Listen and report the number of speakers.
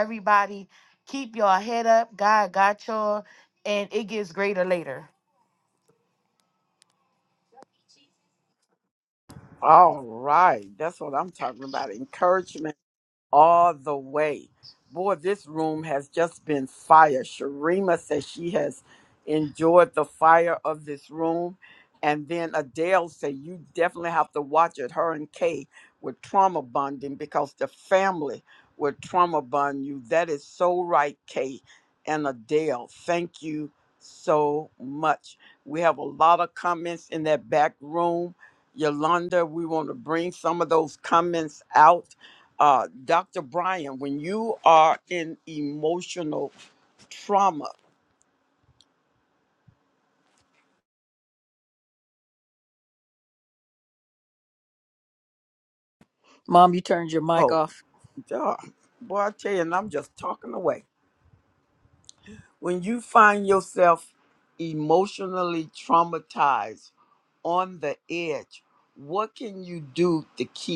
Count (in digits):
3